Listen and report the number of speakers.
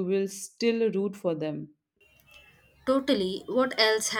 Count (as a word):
two